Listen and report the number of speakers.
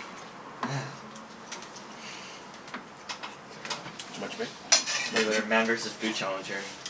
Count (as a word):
two